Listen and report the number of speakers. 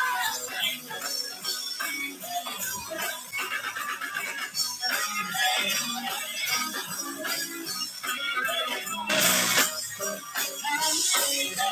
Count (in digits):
0